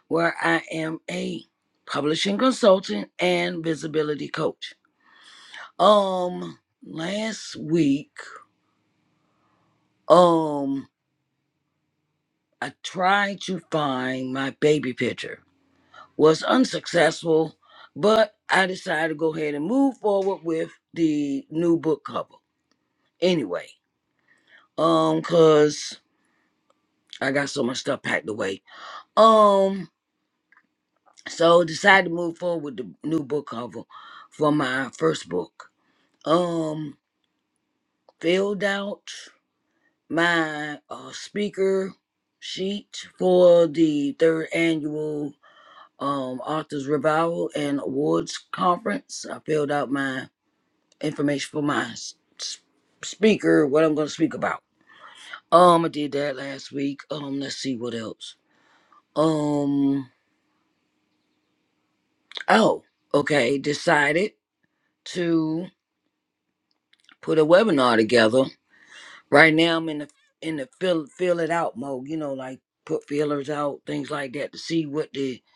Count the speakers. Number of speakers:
1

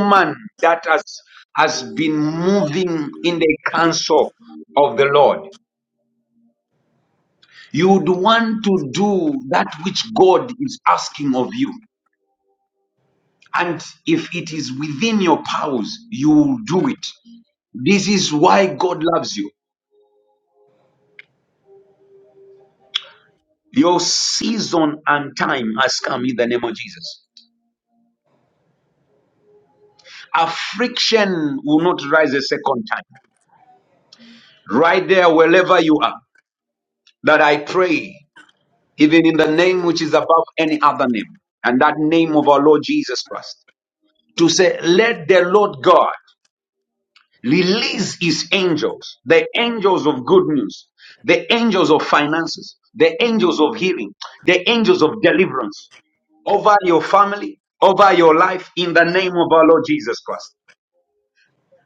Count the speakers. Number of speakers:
1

